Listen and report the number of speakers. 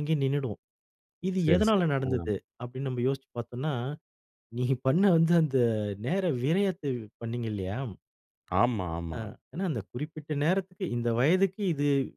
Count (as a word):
two